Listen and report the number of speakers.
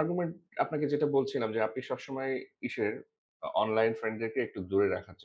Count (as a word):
one